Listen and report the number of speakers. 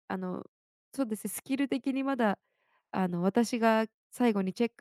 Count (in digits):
1